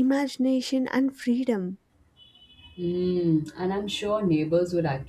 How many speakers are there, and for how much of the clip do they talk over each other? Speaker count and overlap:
two, no overlap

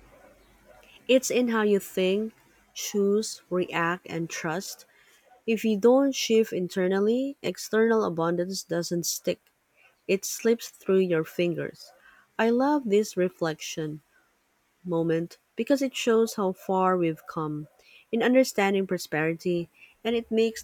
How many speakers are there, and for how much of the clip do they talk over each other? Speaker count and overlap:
one, no overlap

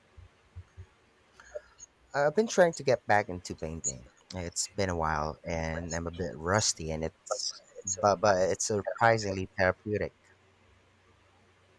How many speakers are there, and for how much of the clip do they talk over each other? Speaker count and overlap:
one, no overlap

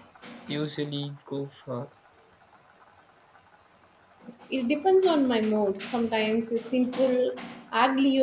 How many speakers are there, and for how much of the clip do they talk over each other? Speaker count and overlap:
two, no overlap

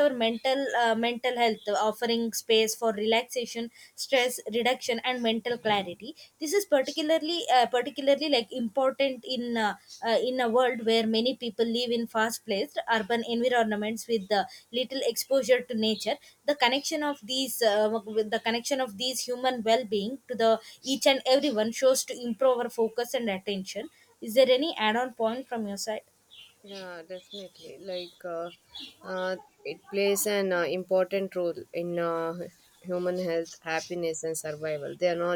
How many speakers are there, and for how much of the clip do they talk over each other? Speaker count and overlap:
two, no overlap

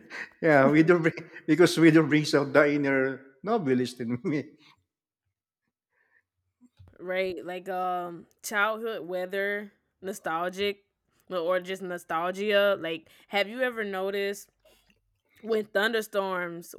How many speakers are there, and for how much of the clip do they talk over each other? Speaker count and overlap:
two, no overlap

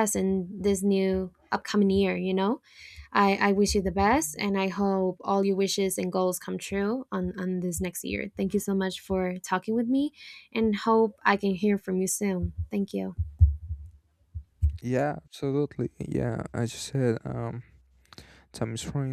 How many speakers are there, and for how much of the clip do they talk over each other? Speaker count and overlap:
two, no overlap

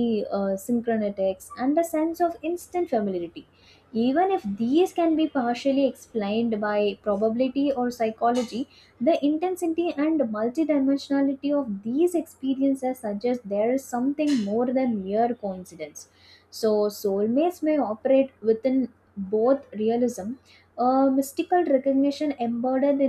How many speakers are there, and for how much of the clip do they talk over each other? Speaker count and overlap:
one, no overlap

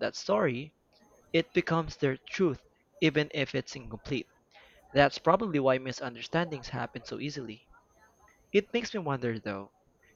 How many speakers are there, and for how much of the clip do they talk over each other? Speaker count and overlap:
one, no overlap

